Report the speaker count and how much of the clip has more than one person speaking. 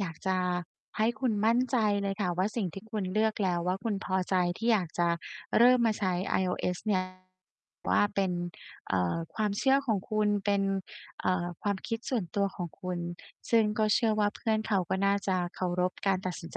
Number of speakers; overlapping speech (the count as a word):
one, no overlap